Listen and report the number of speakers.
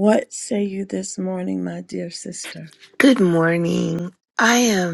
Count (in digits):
2